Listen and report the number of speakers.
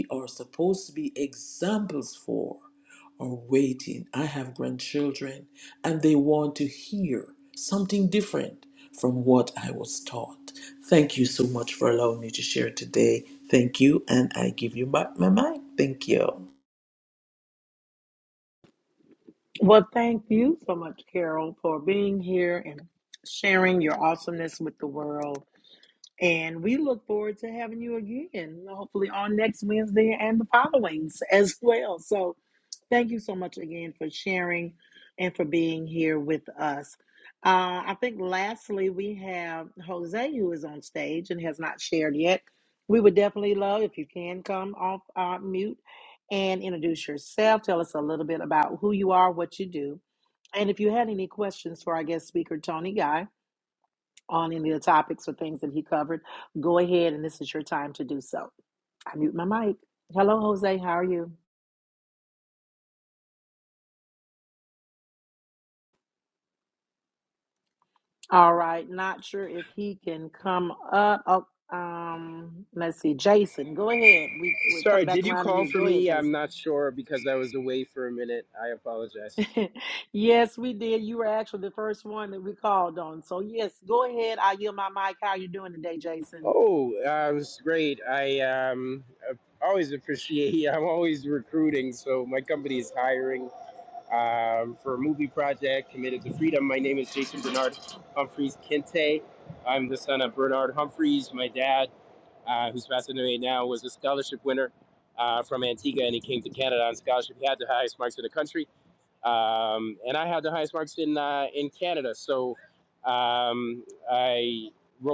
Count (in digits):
3